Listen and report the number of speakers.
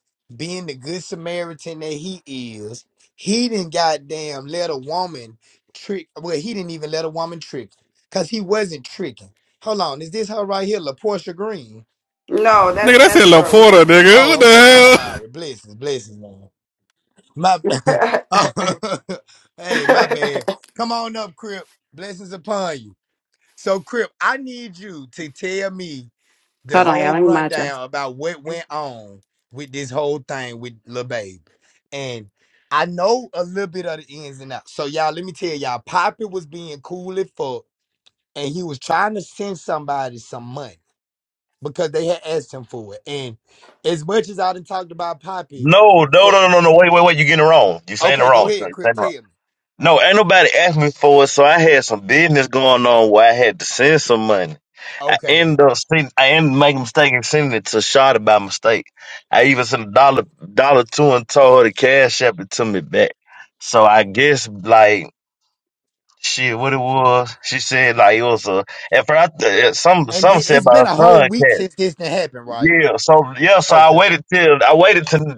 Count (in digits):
4